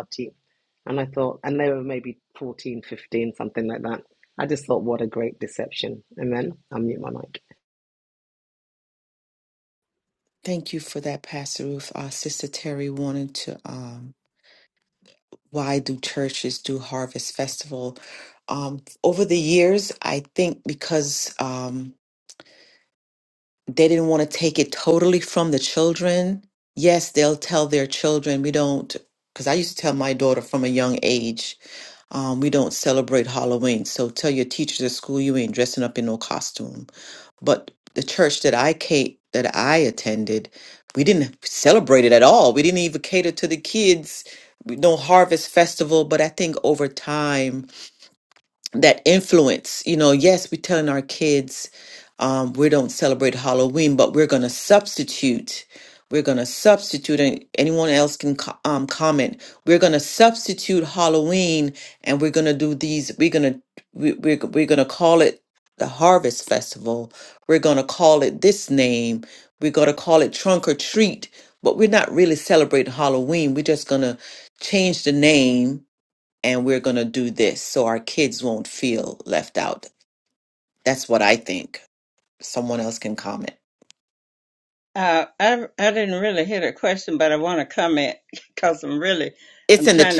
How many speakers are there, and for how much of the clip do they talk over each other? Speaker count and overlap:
3, about 1%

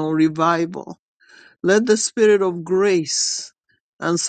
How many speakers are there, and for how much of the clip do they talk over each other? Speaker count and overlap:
1, no overlap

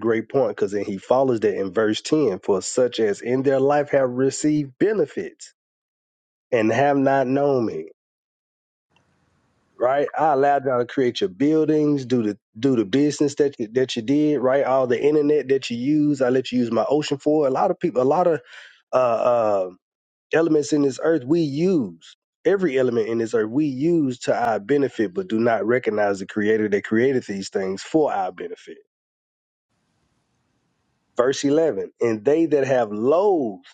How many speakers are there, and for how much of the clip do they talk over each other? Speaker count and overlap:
1, no overlap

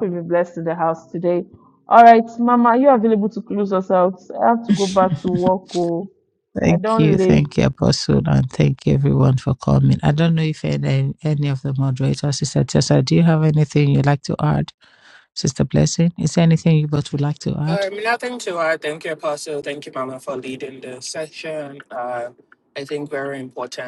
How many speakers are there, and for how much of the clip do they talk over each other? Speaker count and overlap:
3, about 4%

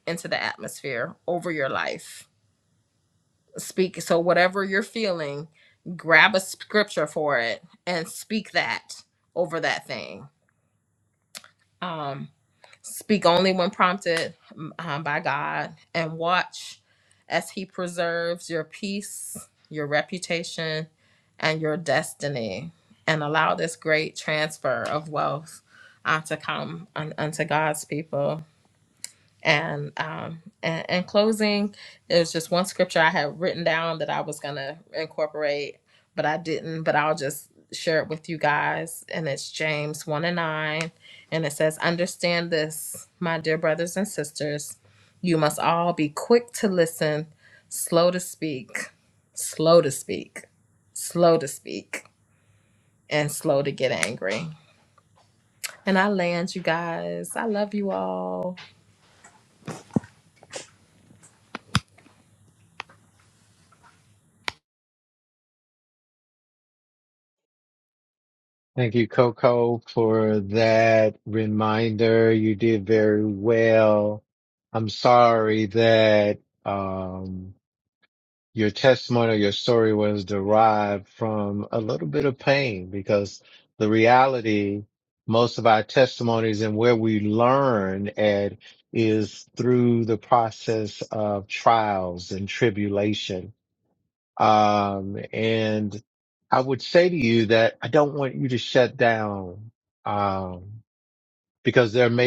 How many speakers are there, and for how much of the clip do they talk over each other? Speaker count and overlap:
2, no overlap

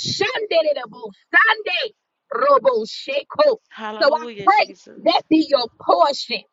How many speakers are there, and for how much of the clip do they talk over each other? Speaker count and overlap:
2, about 11%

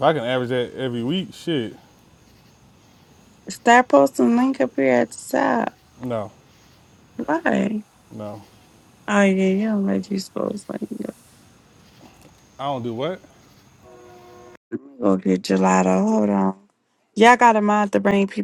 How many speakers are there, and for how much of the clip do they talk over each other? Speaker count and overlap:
2, no overlap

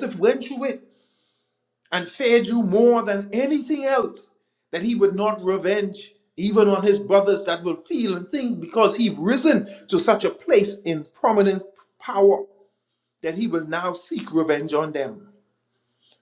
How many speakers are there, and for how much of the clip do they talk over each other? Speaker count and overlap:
1, no overlap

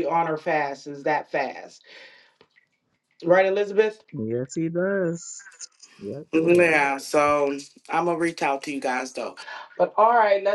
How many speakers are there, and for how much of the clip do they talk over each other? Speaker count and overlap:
2, about 4%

